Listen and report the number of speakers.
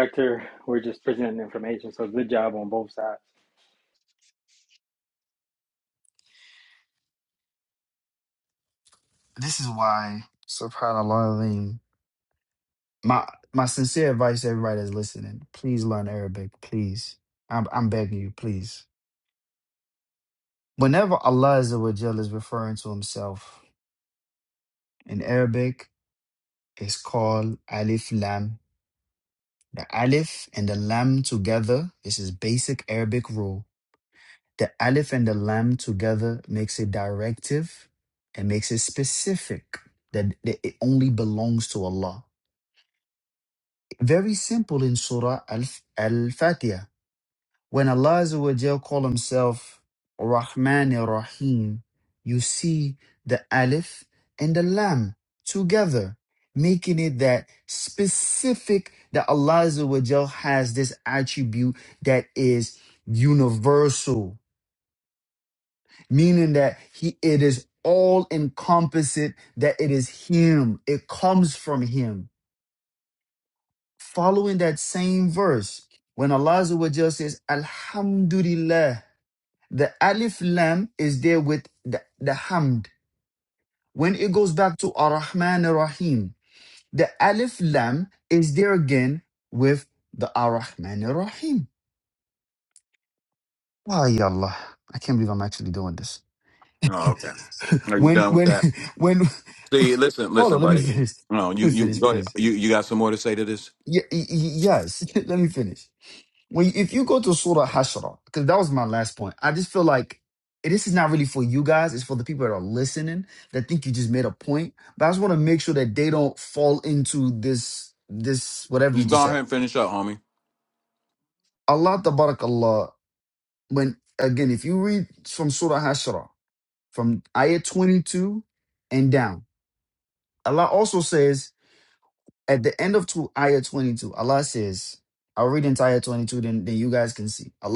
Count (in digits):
3